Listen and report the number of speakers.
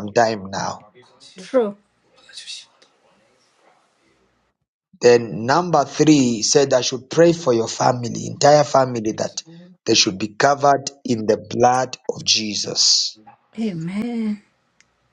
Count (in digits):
2